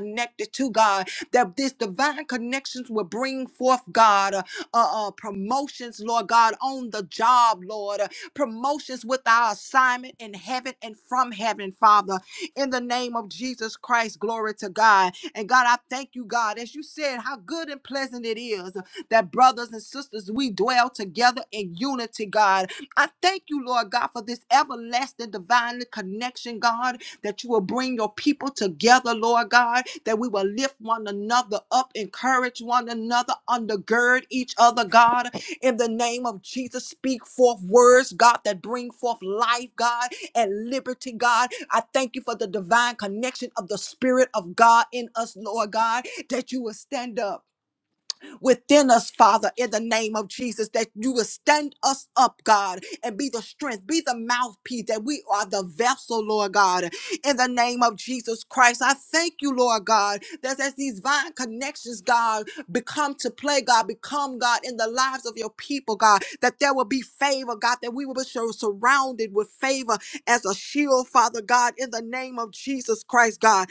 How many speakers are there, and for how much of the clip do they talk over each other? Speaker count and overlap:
1, no overlap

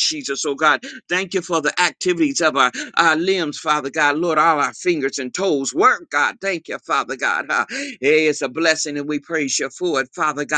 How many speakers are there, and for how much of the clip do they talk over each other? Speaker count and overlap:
1, no overlap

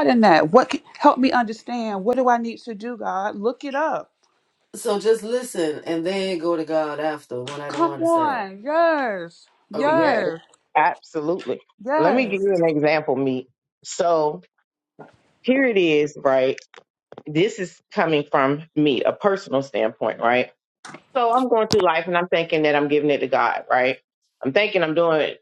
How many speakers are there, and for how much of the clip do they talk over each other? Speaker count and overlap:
3, about 7%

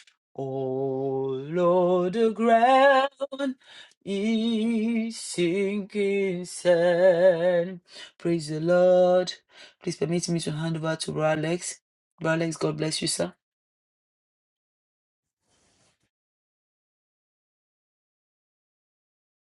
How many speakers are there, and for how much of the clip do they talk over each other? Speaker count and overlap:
1, no overlap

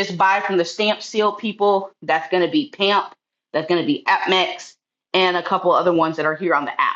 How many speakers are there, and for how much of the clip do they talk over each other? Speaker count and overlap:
1, no overlap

